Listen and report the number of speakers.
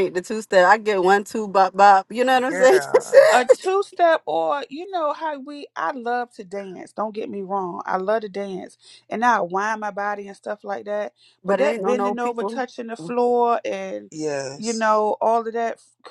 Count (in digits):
3